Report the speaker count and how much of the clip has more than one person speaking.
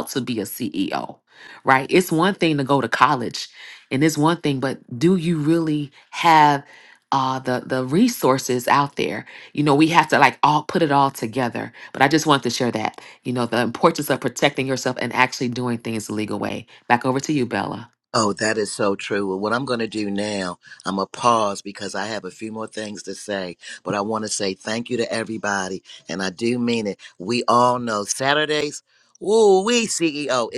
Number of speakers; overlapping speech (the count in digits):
2, no overlap